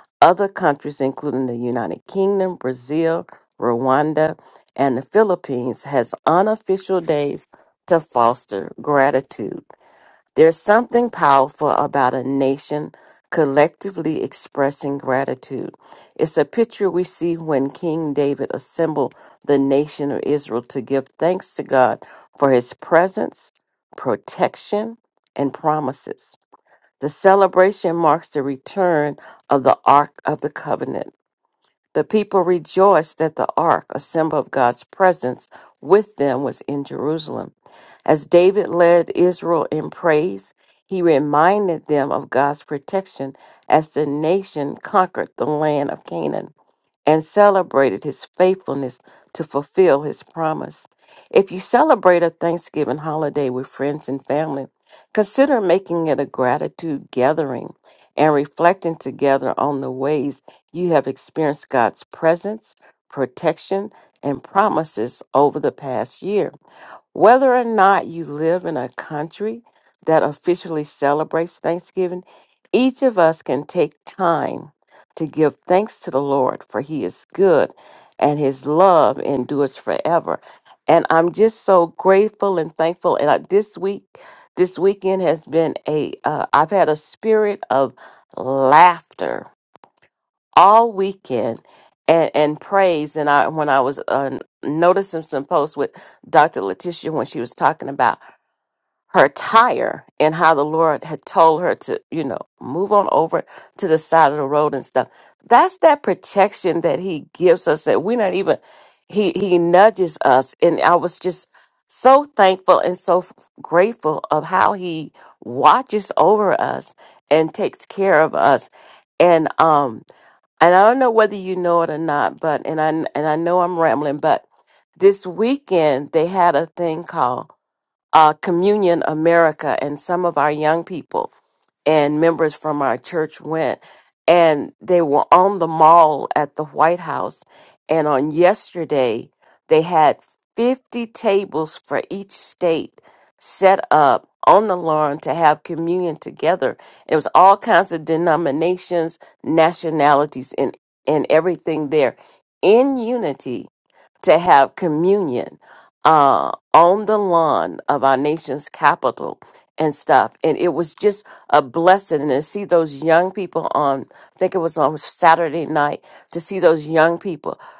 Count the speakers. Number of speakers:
1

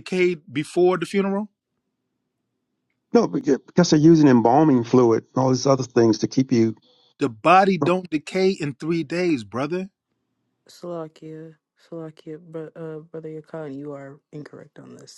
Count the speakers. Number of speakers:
3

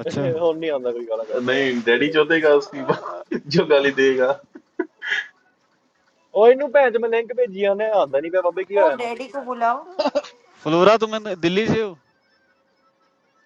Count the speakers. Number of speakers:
4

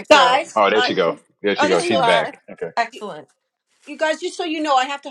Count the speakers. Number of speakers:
3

